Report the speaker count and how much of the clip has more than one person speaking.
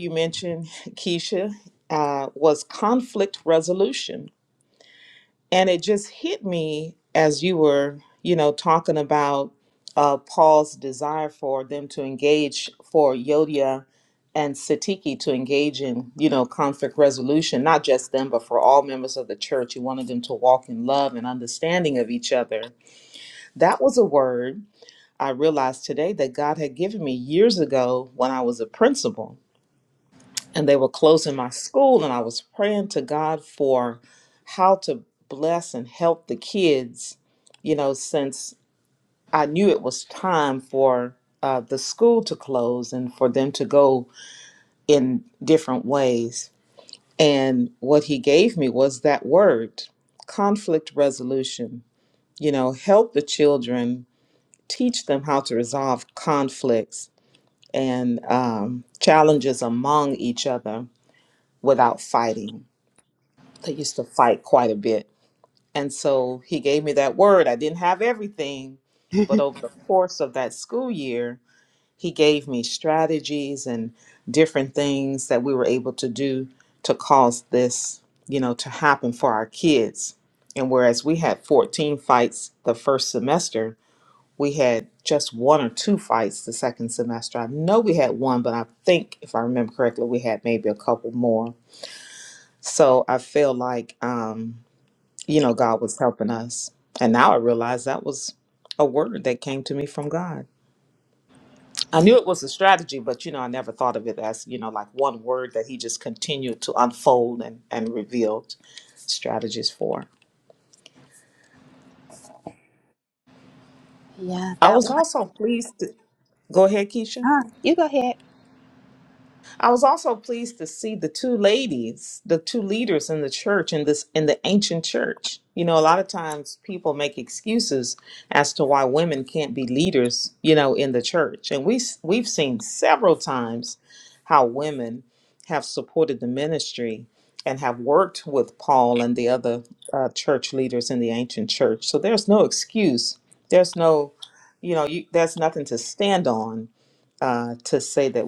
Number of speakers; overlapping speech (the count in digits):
2, under 1%